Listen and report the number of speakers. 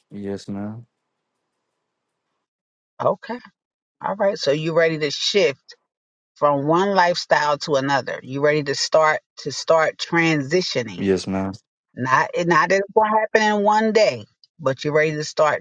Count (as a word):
two